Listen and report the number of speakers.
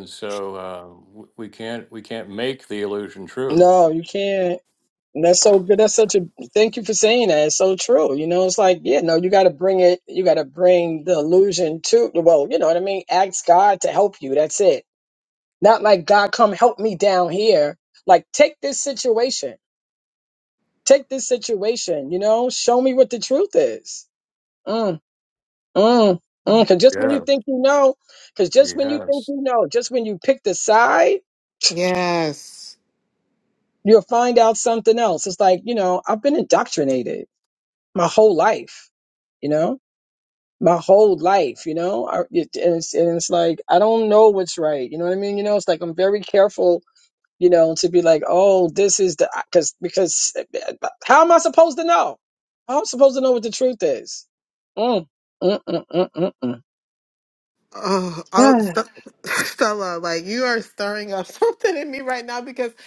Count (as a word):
three